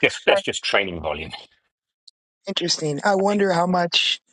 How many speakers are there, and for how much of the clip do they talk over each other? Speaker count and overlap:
2, about 7%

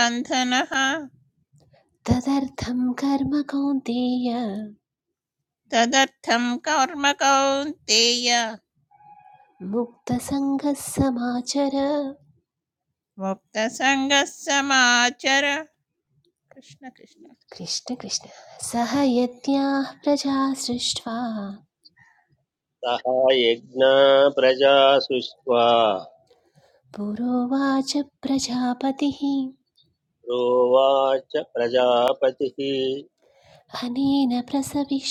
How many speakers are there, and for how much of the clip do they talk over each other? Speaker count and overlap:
3, no overlap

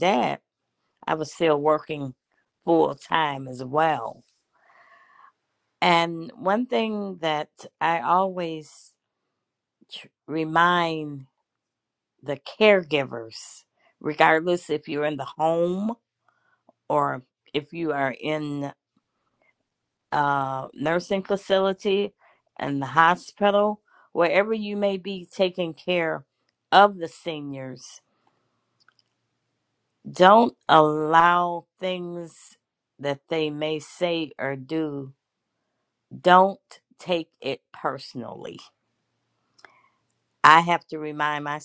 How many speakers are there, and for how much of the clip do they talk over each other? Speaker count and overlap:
1, no overlap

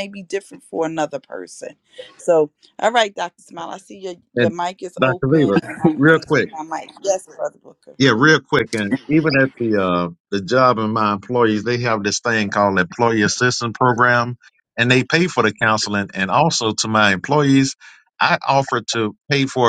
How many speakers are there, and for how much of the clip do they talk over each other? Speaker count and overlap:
2, about 7%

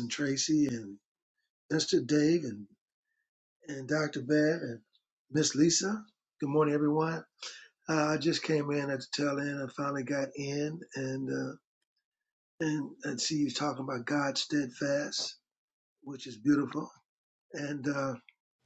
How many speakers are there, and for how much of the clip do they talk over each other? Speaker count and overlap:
1, no overlap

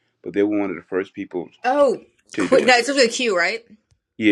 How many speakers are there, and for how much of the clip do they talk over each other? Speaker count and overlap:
2, about 8%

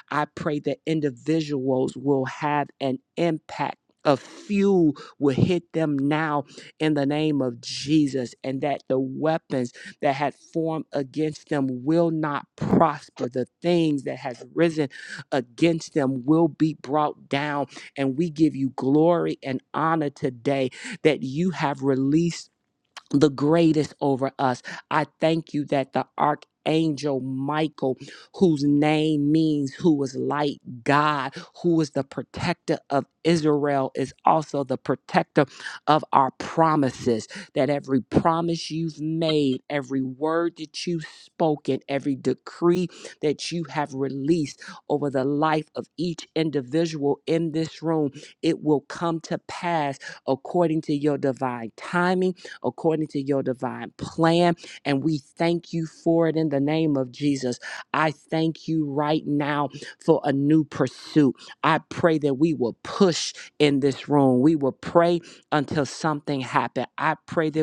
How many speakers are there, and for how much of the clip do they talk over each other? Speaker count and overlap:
1, no overlap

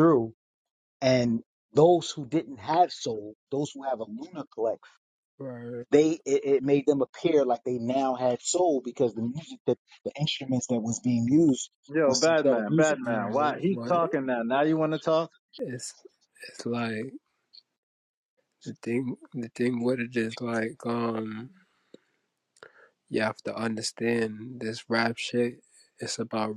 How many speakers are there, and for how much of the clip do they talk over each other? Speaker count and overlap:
3, about 7%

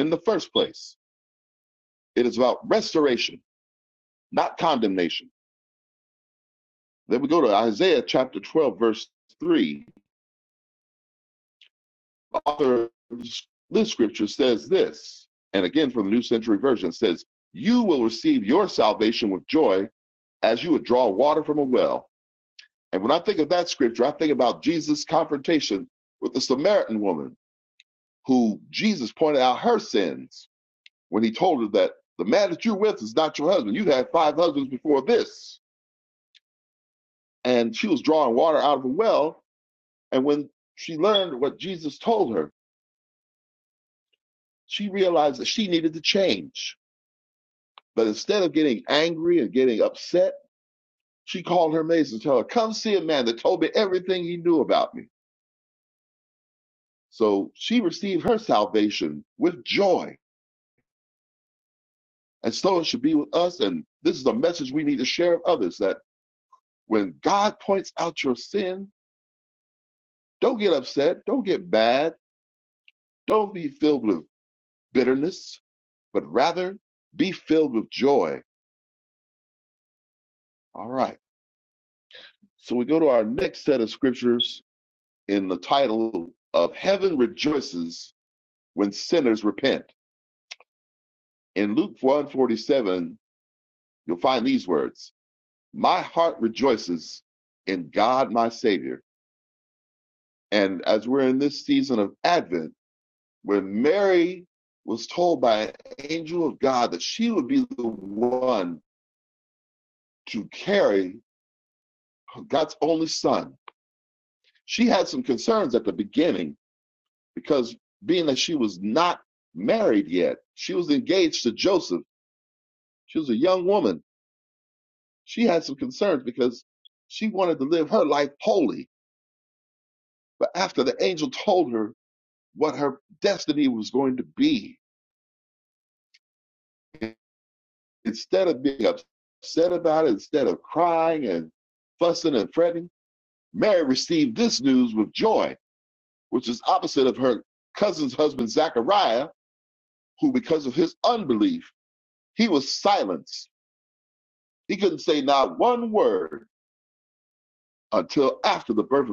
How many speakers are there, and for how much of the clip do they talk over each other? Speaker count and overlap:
1, no overlap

